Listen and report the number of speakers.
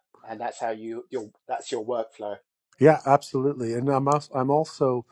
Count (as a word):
two